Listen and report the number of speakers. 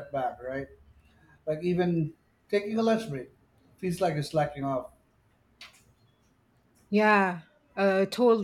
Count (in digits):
2